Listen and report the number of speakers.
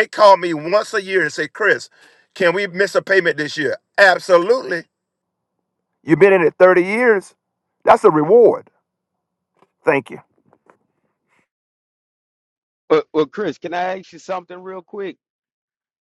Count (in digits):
2